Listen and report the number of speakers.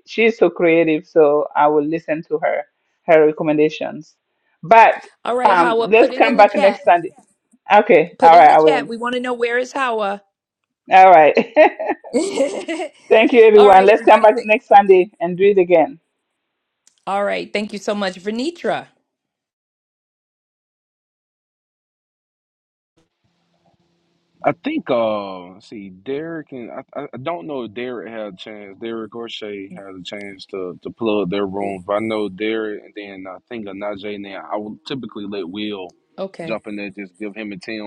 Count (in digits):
3